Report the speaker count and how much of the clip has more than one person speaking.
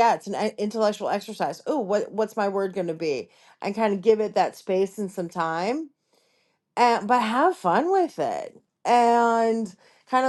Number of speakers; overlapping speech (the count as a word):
one, no overlap